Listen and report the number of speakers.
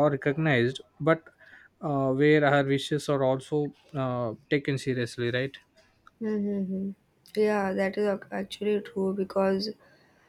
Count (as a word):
two